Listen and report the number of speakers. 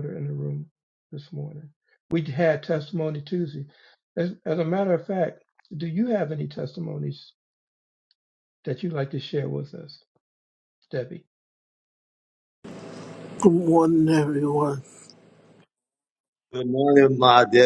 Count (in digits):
3